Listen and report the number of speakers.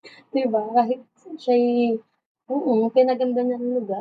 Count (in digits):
1